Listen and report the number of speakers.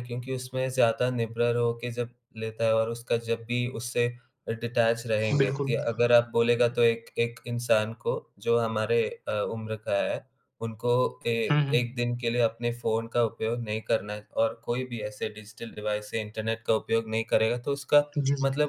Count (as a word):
two